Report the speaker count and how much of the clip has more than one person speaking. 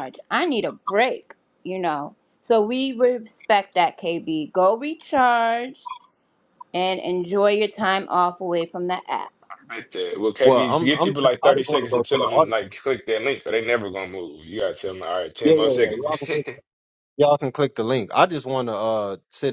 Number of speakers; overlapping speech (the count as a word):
three, about 14%